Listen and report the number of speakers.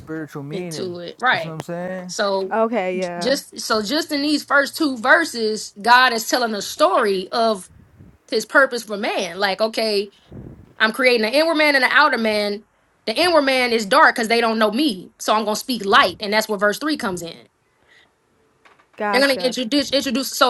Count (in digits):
3